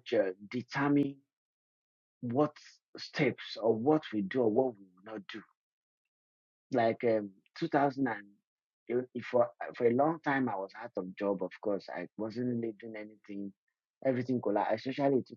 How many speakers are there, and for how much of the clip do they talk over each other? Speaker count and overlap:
1, no overlap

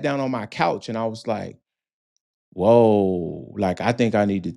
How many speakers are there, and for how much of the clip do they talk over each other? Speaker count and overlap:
1, no overlap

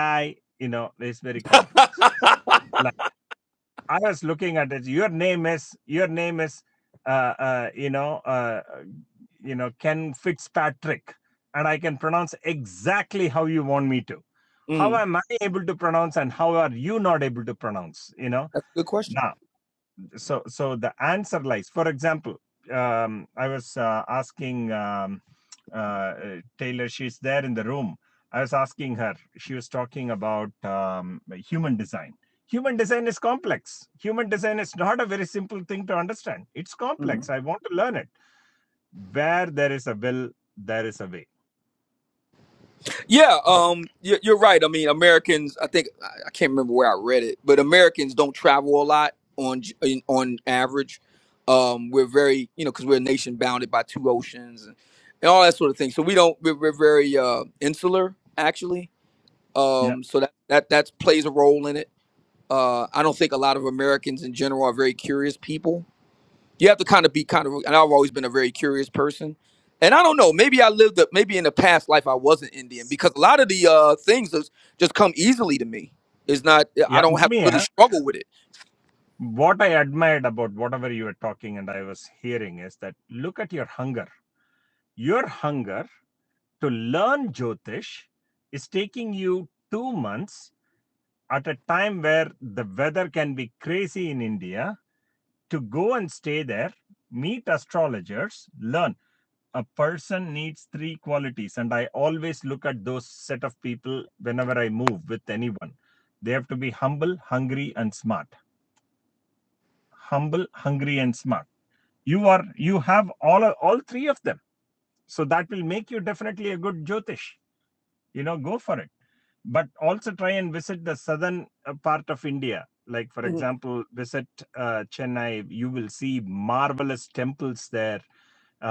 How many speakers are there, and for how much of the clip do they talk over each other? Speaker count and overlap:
2, about 1%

